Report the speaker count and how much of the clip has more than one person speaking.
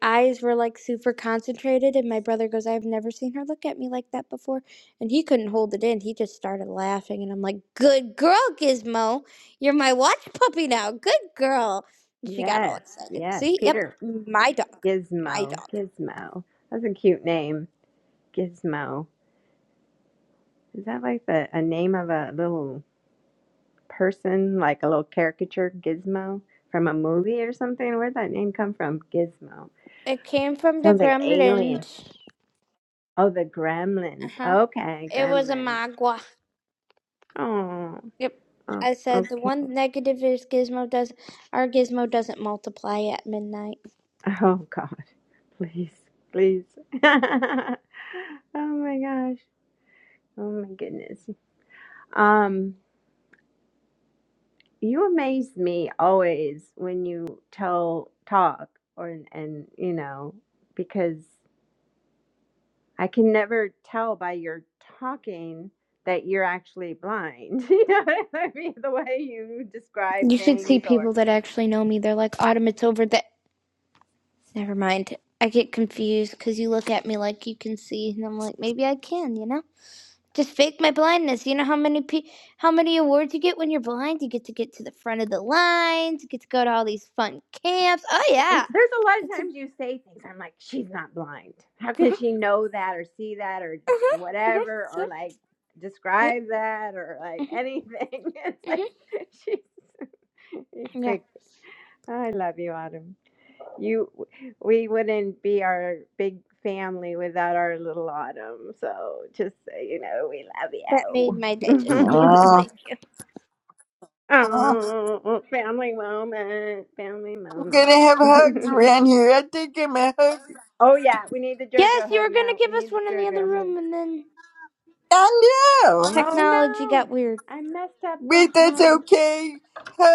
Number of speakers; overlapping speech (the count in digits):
3, about 10%